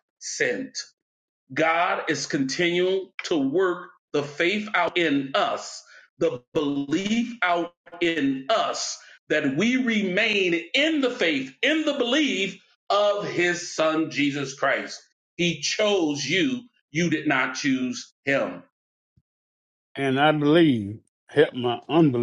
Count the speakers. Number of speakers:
2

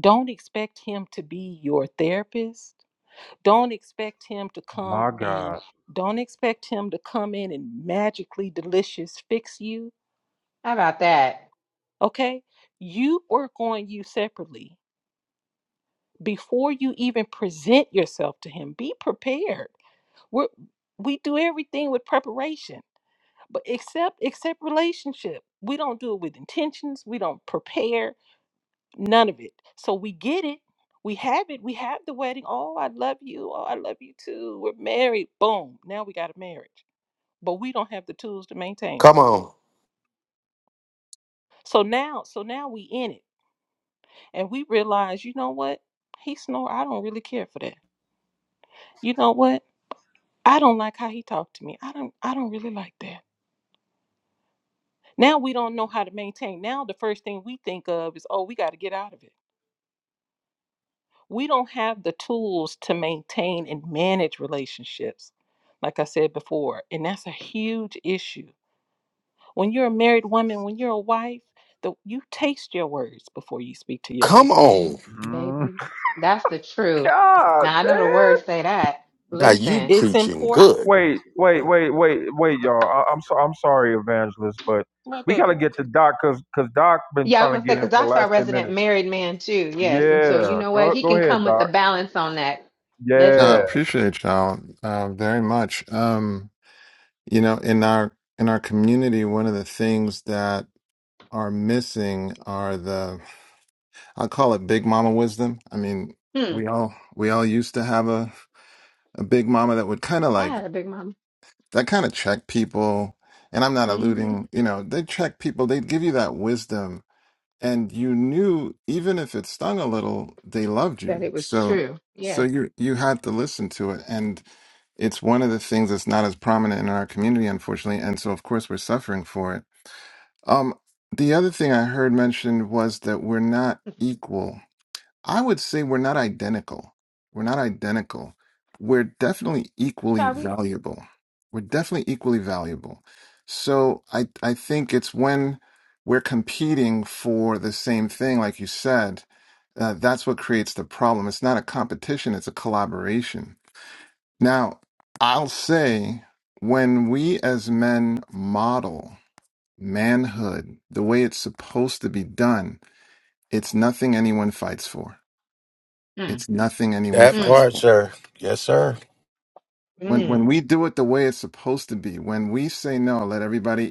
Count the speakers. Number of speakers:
5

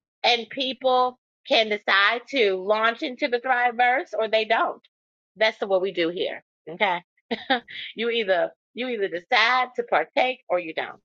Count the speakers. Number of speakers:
1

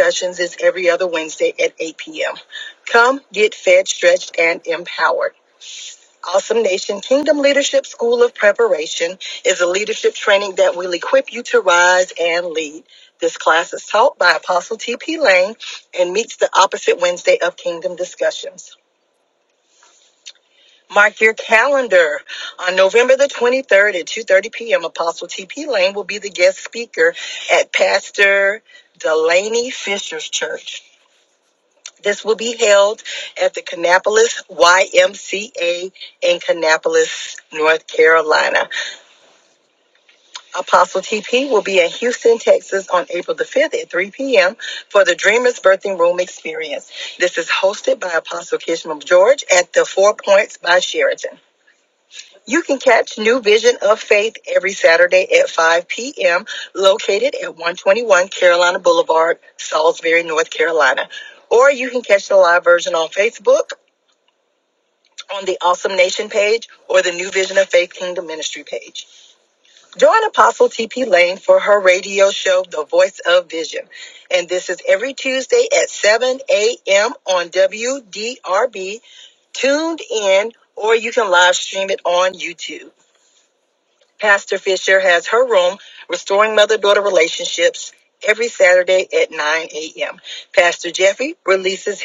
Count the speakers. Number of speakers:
1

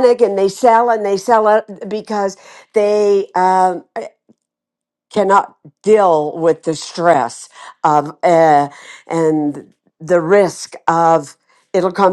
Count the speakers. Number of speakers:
1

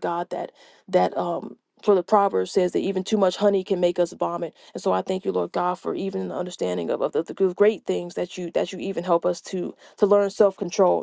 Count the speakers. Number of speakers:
1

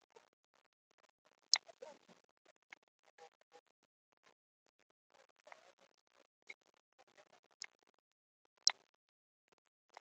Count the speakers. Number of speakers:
0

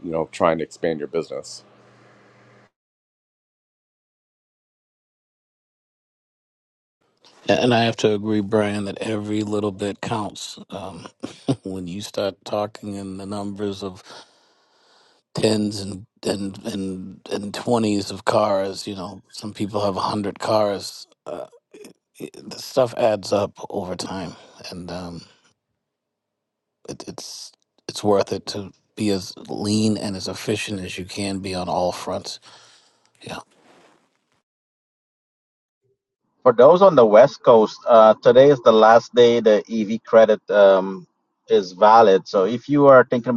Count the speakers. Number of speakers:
3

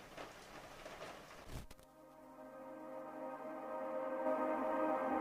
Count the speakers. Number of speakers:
0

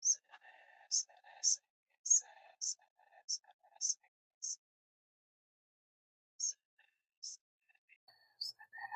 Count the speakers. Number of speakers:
0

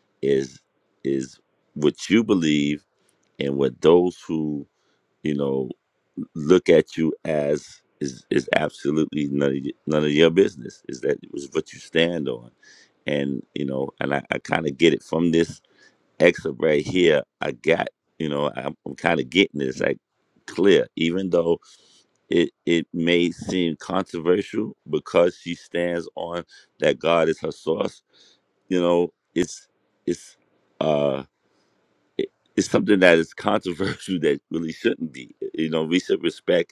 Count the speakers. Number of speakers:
1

